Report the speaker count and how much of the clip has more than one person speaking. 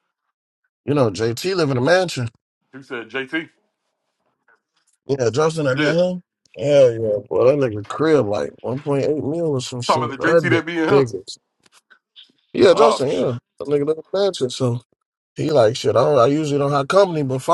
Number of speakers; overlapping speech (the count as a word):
two, about 12%